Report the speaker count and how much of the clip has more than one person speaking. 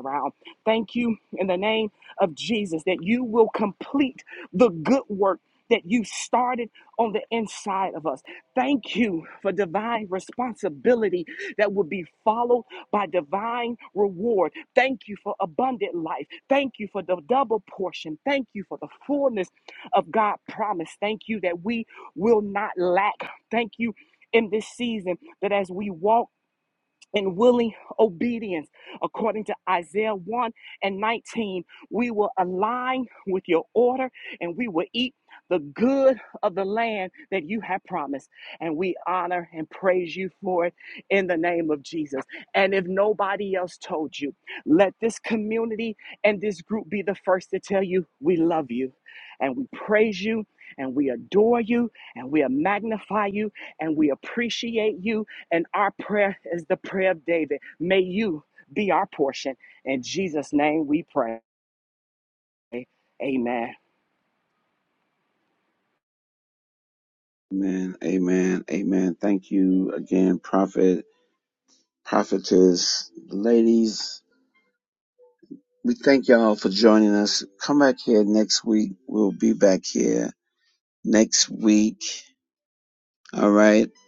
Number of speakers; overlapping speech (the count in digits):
2, no overlap